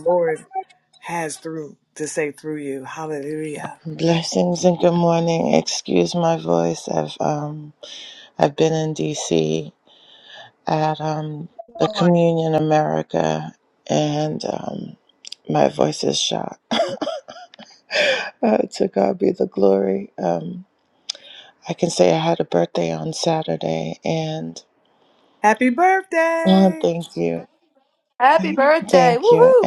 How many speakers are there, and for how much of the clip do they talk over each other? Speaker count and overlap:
3, about 4%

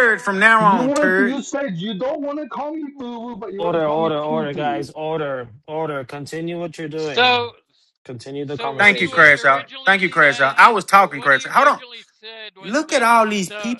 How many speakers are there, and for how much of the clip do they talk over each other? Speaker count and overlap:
4, about 43%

